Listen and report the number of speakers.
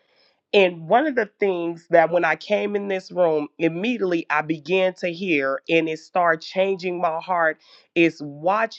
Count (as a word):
one